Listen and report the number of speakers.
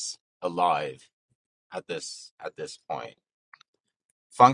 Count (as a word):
one